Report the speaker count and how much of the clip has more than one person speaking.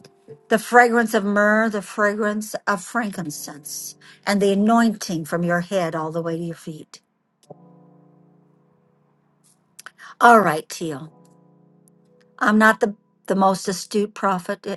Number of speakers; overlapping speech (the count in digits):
1, no overlap